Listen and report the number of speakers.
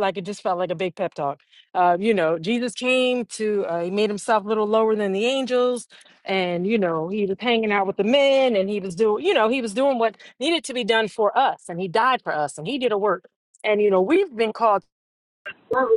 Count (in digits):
1